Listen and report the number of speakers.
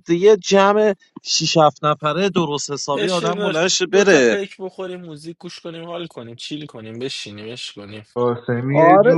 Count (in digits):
3